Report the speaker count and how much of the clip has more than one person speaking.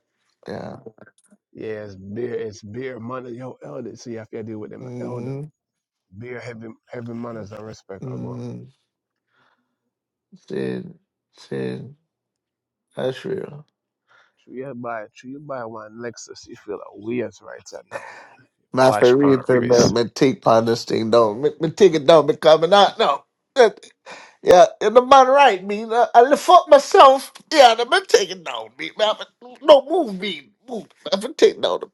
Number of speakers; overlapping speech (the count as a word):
two, about 6%